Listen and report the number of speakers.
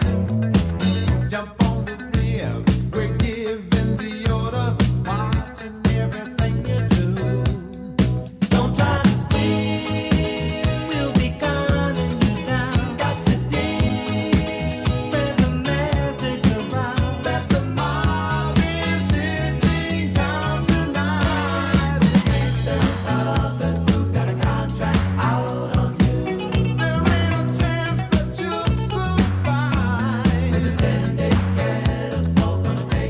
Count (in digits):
1